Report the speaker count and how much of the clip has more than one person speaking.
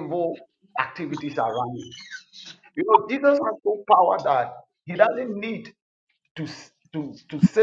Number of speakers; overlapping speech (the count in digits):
1, no overlap